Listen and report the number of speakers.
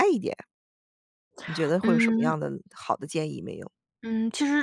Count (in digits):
2